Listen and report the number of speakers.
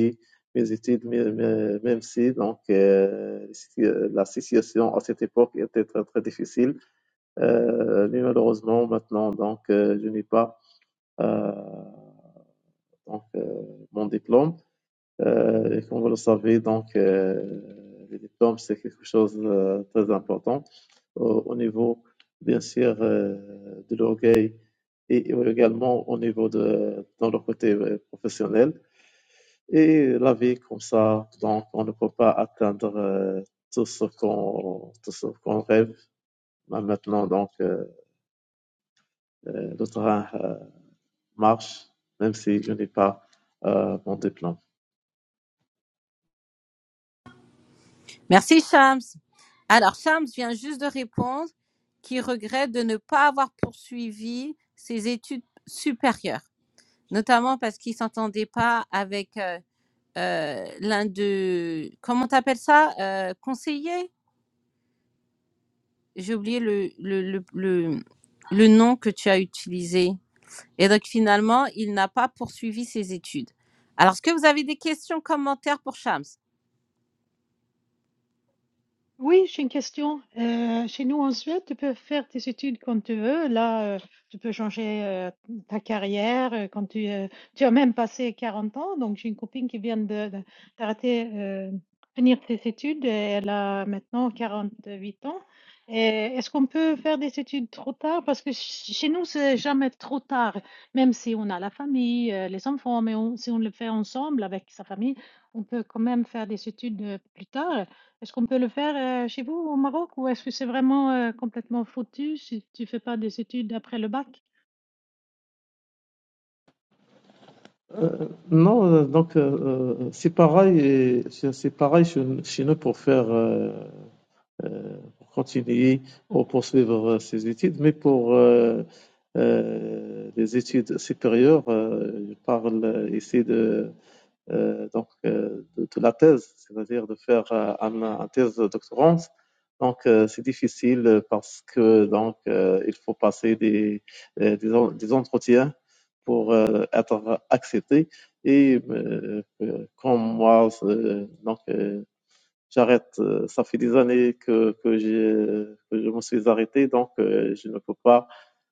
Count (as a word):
three